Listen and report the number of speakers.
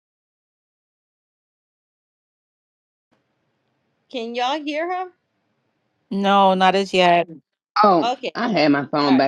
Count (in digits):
3